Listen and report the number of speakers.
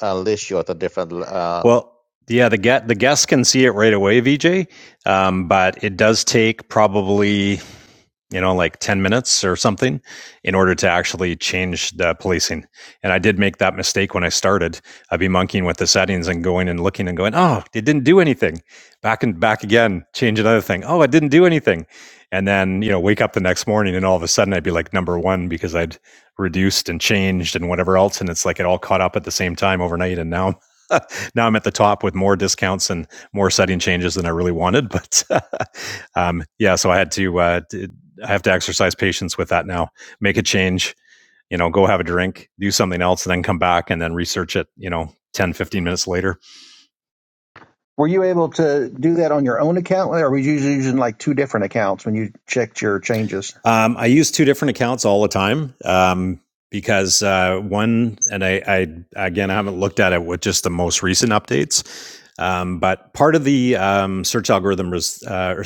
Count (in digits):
3